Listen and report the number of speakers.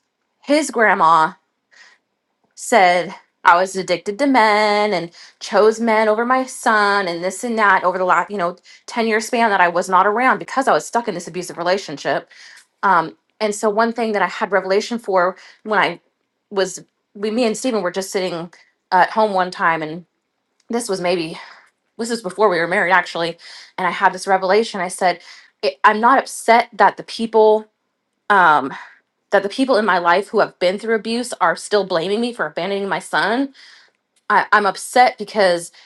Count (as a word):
one